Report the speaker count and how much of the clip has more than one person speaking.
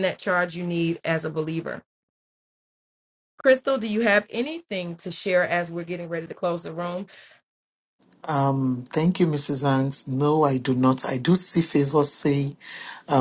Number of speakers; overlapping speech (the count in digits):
2, no overlap